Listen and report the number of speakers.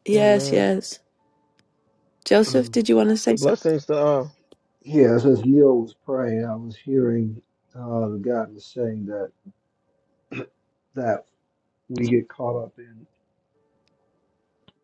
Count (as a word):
three